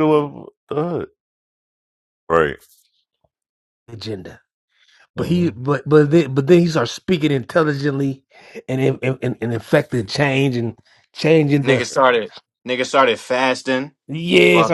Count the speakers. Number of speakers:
3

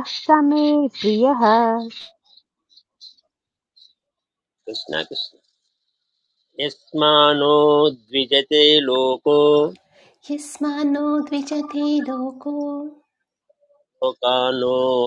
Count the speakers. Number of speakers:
3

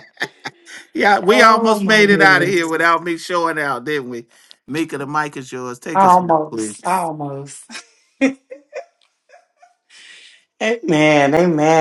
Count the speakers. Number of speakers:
2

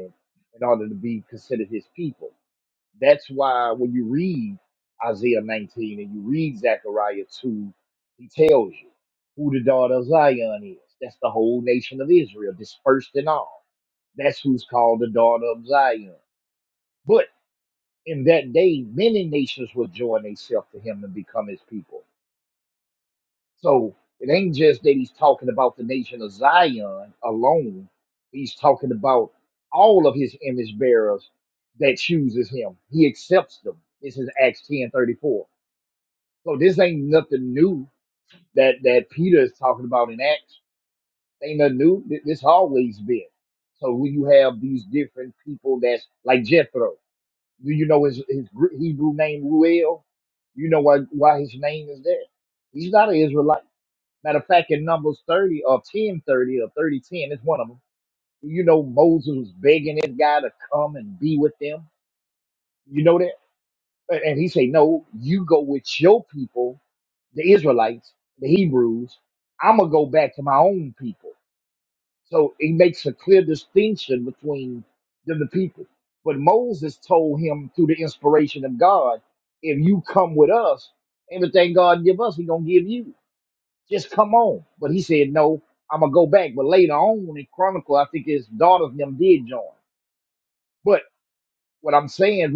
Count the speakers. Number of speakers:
1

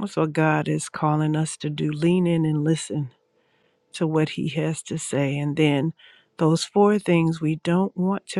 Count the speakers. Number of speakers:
1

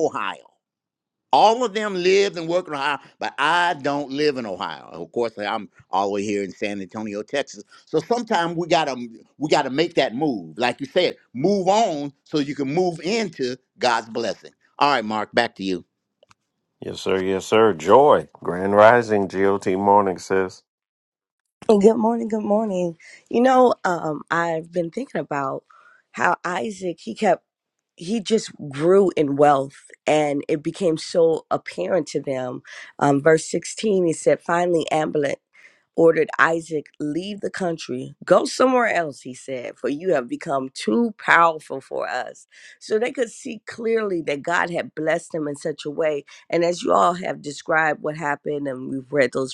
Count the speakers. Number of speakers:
3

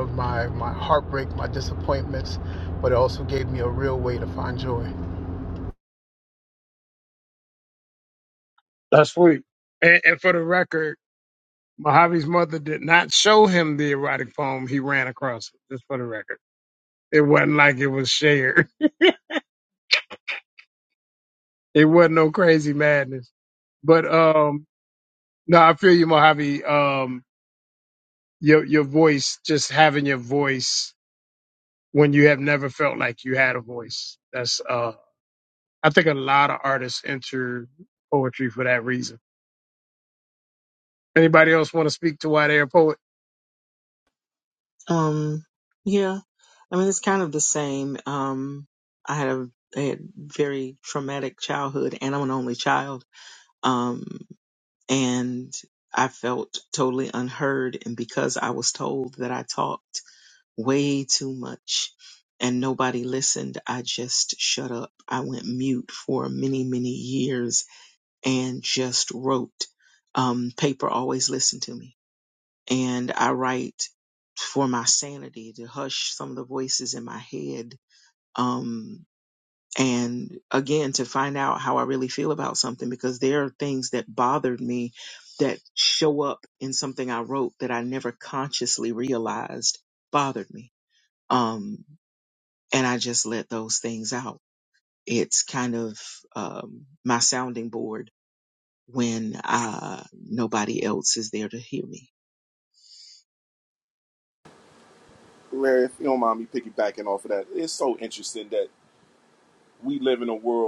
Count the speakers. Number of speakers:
4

